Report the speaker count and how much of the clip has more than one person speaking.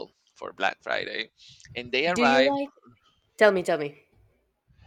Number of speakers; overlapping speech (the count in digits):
2, about 9%